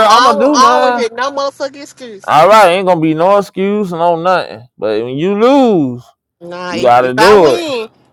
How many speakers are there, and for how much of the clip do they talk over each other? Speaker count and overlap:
two, about 25%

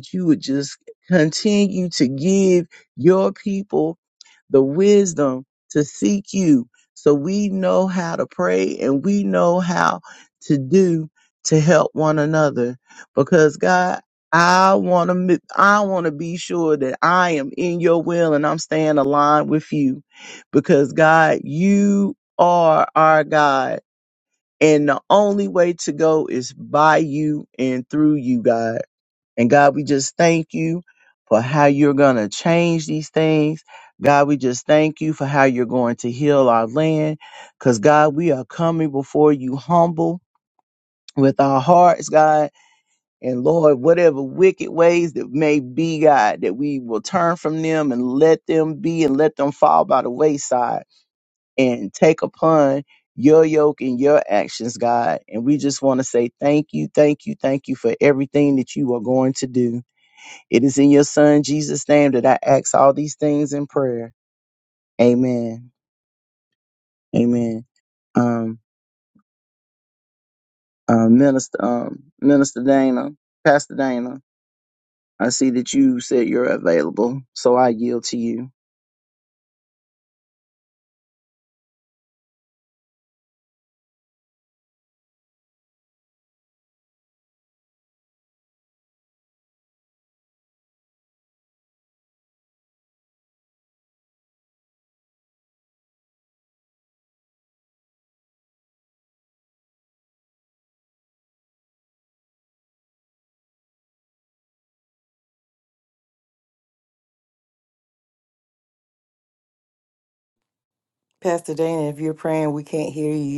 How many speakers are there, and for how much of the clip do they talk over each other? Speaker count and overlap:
two, no overlap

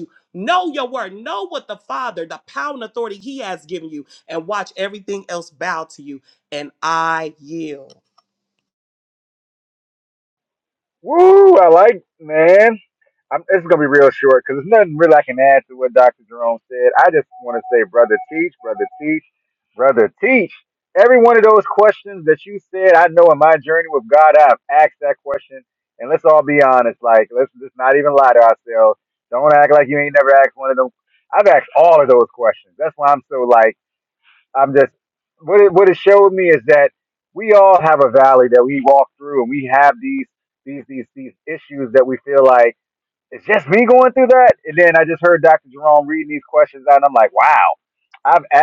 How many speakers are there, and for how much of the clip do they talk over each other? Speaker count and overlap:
two, no overlap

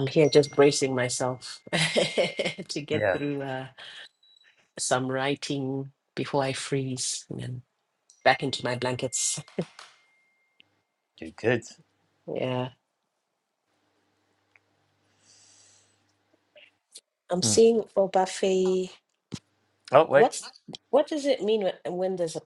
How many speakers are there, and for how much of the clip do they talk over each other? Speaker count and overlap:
two, about 3%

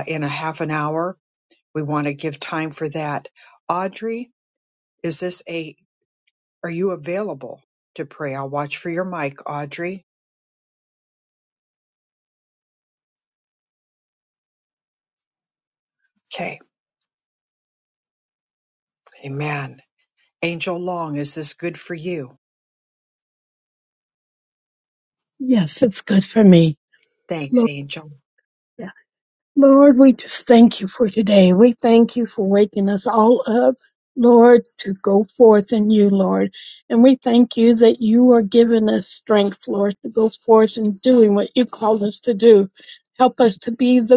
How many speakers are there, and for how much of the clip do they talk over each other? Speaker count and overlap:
two, under 1%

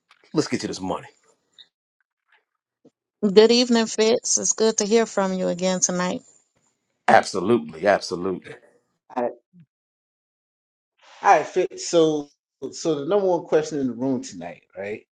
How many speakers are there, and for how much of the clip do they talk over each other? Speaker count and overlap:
three, no overlap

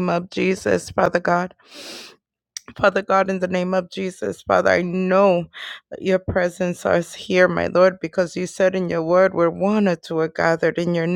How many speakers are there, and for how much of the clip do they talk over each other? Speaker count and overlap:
one, no overlap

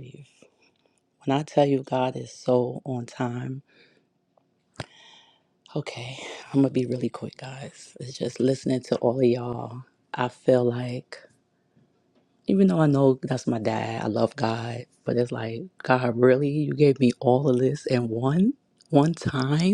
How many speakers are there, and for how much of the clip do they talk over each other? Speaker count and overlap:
one, no overlap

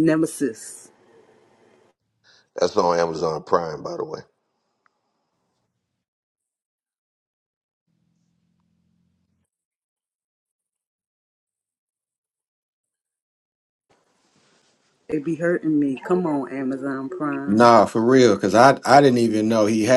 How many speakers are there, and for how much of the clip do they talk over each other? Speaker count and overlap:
three, about 1%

